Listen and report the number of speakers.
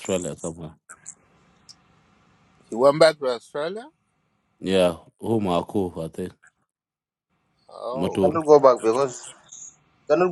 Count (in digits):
3